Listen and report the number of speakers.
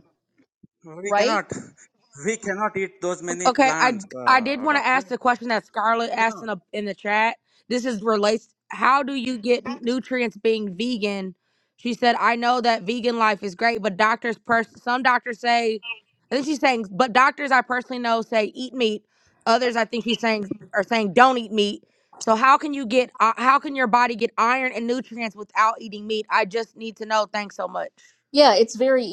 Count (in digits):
3